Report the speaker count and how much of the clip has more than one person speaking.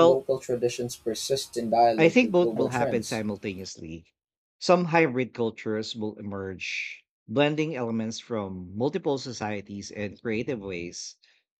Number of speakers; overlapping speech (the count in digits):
2, about 12%